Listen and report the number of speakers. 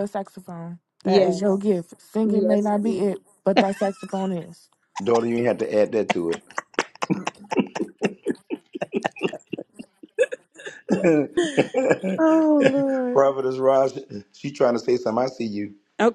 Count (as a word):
three